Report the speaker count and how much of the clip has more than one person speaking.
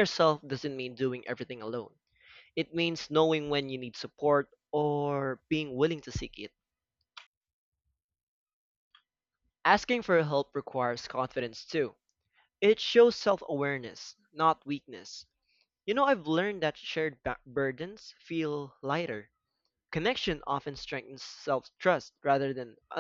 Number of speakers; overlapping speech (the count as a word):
one, no overlap